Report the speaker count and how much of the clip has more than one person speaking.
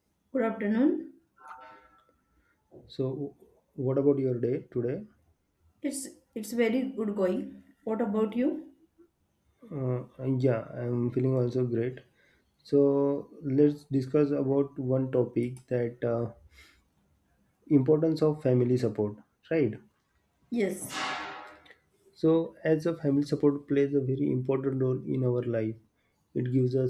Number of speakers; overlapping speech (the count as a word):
two, no overlap